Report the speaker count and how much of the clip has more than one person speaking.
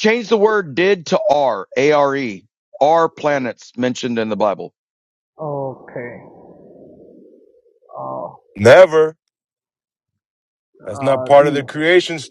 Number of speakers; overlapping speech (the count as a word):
three, about 7%